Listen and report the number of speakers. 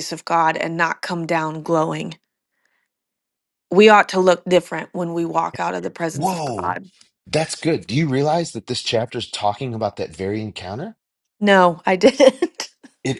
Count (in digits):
2